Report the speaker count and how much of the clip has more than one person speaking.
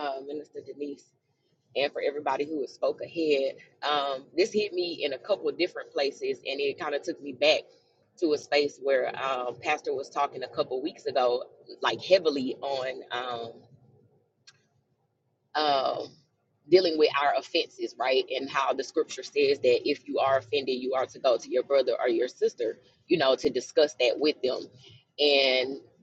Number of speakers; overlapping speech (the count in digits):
1, no overlap